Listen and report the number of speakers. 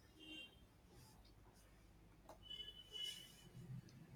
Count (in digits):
0